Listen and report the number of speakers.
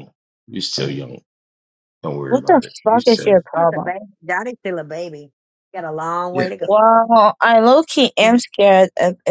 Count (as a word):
three